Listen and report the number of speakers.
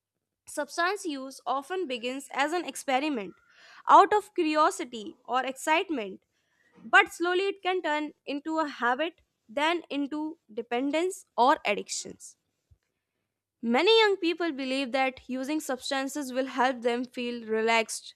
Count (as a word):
one